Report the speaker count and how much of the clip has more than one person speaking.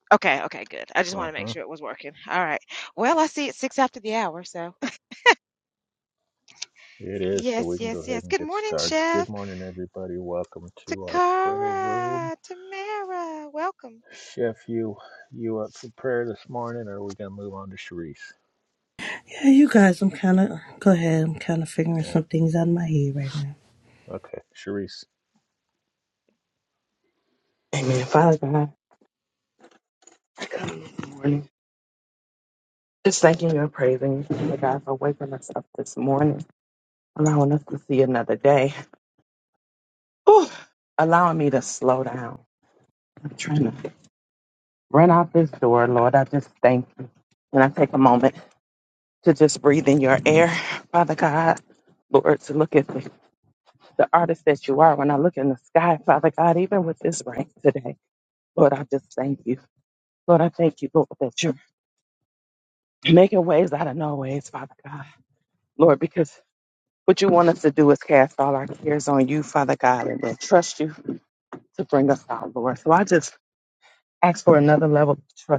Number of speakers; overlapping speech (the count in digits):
4, about 5%